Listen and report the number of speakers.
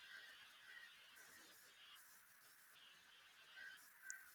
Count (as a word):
zero